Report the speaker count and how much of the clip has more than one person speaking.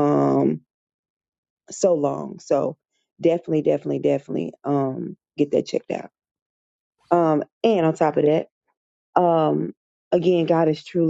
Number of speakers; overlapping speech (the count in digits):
1, no overlap